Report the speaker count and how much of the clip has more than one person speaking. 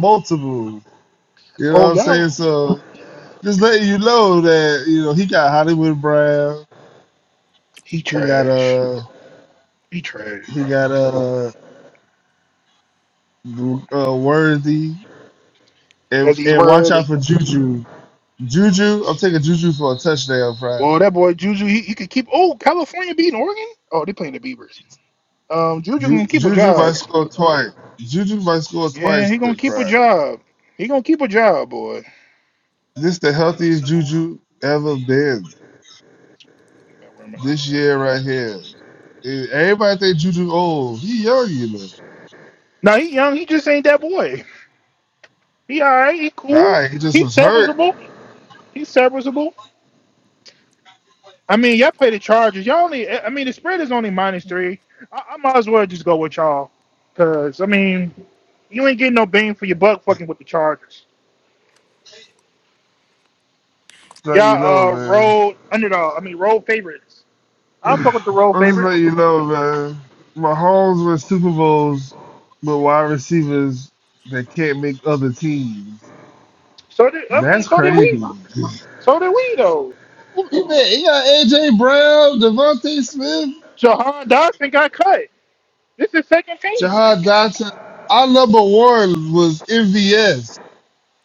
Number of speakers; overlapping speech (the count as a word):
two, about 8%